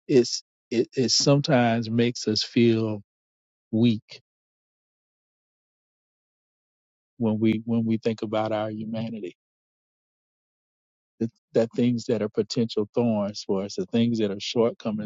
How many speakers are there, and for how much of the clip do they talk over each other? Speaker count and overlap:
one, no overlap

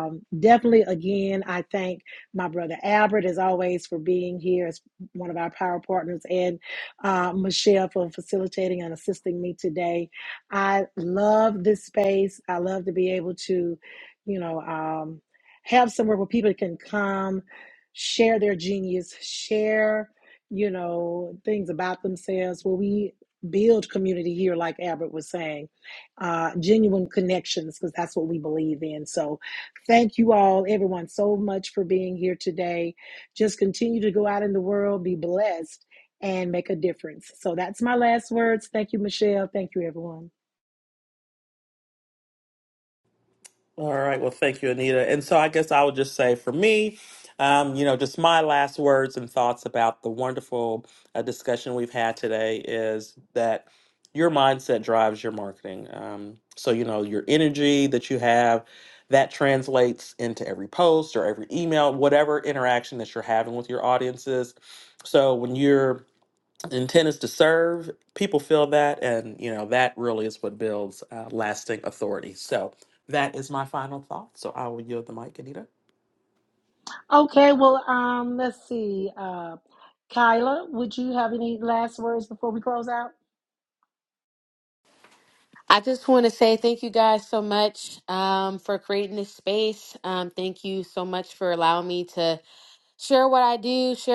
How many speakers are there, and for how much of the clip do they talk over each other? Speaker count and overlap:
three, no overlap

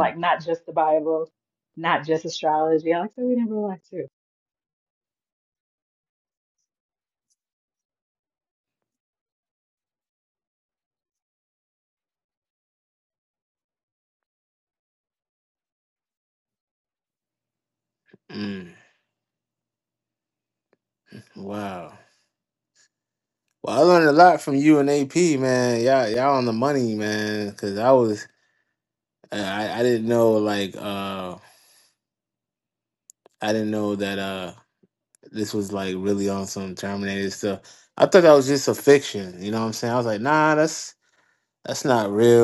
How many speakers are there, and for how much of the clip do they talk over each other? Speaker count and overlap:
two, under 1%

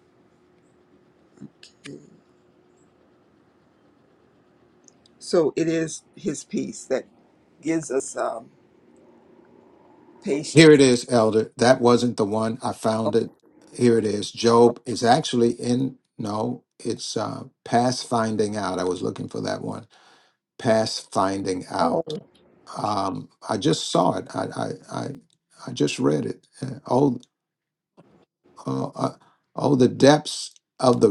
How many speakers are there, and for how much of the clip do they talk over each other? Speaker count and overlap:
two, about 2%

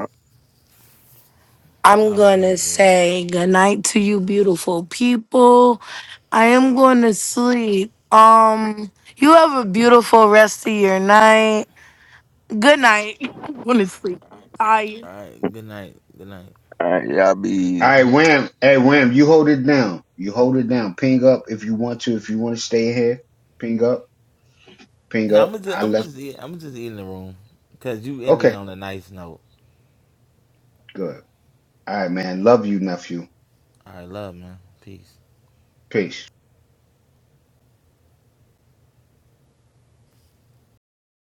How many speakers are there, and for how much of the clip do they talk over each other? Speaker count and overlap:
four, about 5%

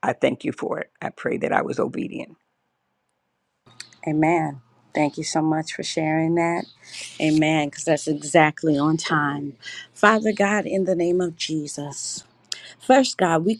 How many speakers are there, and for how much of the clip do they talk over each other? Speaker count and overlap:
two, no overlap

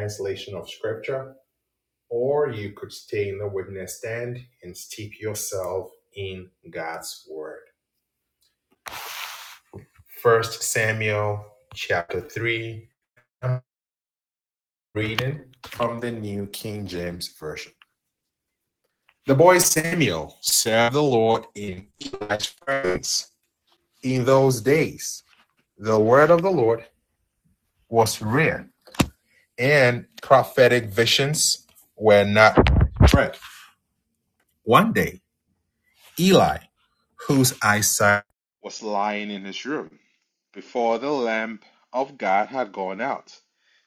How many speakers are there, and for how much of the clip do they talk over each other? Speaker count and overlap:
one, no overlap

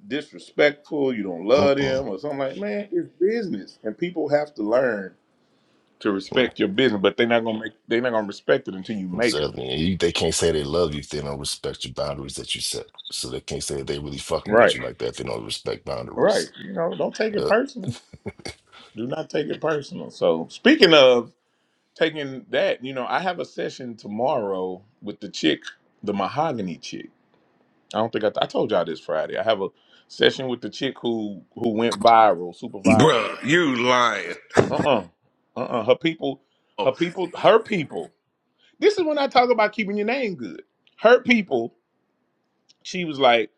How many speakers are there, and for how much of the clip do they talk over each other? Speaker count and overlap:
three, about 5%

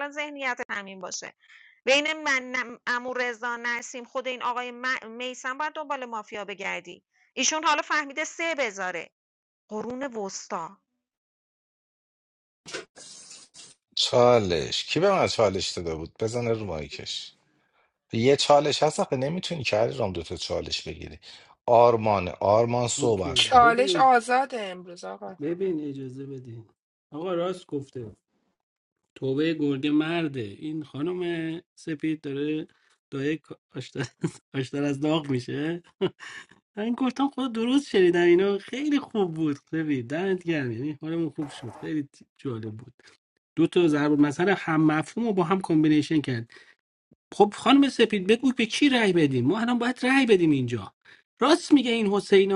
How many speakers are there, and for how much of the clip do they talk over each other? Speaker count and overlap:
four, about 2%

